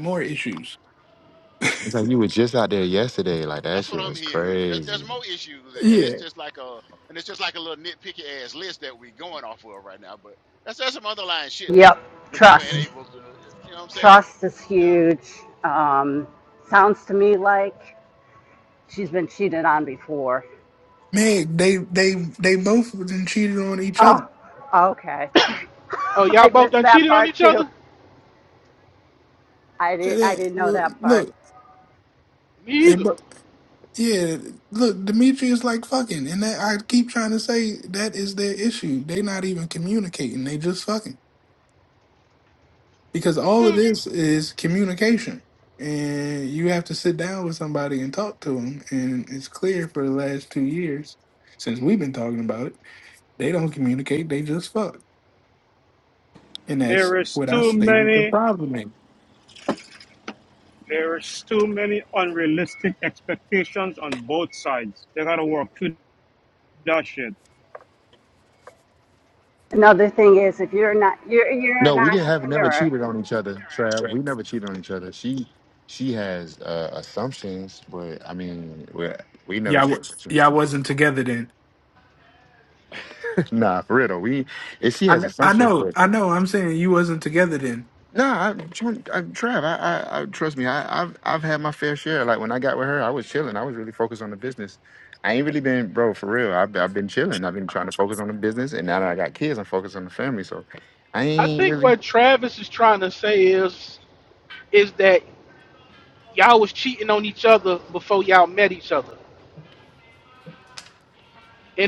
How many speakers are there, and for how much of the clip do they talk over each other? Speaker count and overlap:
6, about 10%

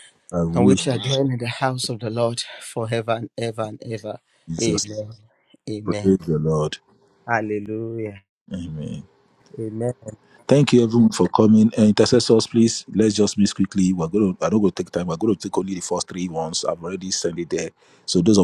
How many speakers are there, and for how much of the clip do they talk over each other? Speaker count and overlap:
2, about 2%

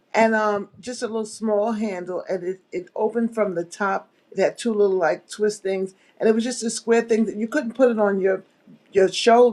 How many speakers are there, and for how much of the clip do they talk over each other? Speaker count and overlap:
1, no overlap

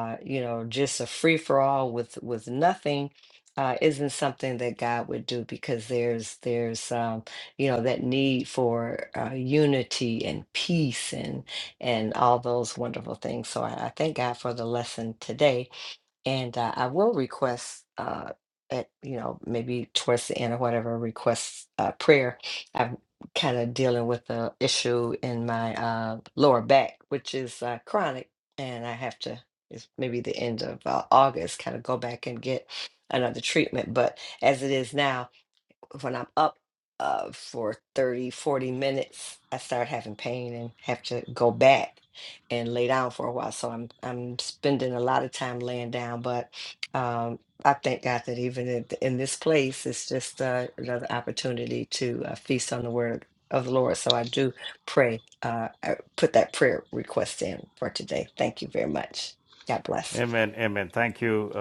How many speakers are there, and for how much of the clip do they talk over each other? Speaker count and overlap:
2, under 1%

